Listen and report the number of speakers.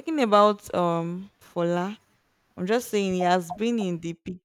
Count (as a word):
one